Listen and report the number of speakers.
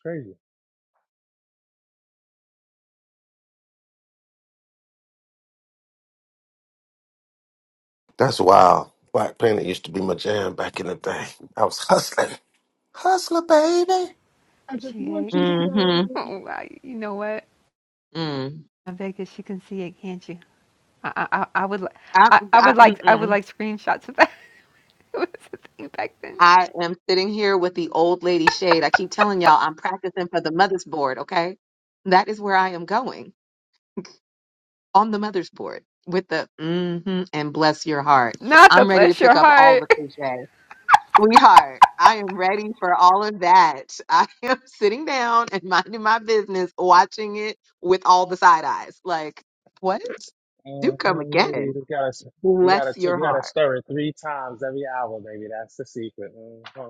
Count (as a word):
four